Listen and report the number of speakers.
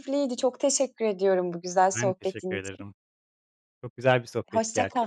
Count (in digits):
2